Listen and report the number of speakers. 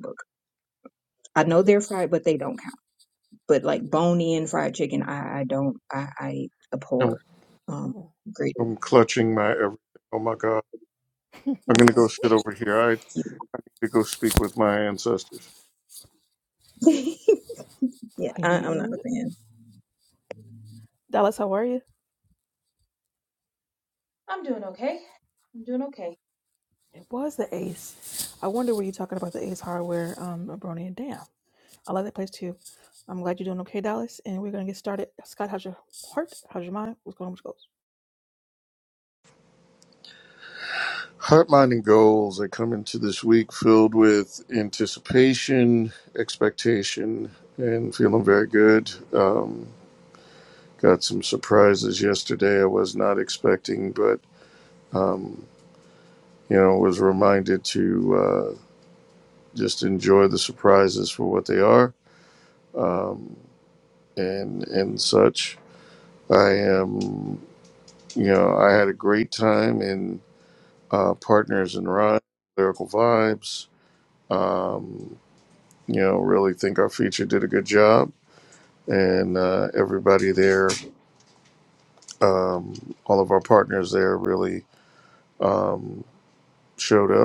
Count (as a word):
four